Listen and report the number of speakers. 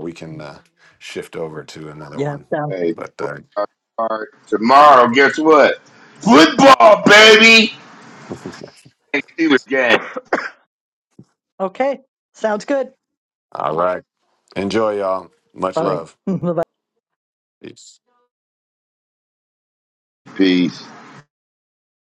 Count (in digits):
3